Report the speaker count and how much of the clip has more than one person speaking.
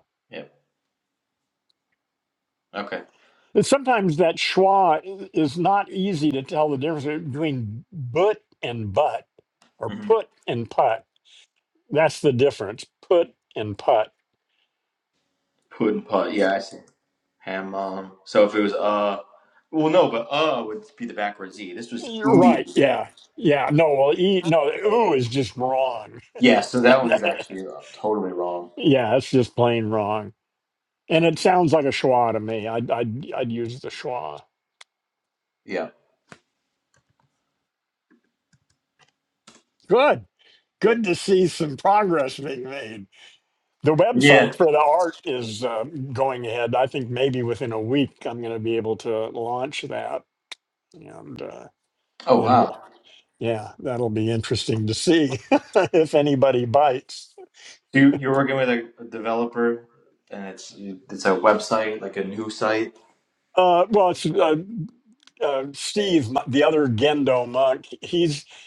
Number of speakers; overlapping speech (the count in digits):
2, about 2%